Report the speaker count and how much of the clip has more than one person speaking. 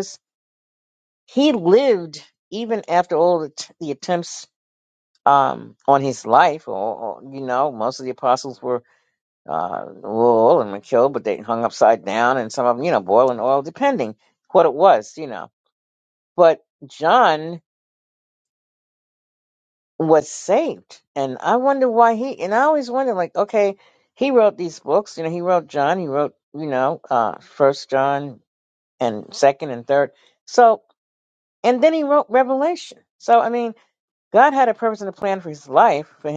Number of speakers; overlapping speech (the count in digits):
1, no overlap